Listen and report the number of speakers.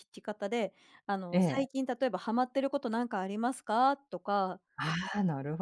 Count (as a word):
two